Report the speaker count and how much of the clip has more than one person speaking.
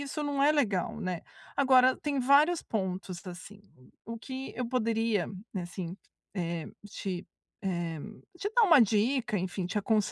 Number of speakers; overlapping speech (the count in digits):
1, no overlap